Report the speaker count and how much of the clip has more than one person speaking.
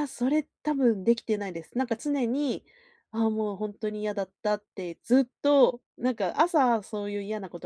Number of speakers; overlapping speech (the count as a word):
one, no overlap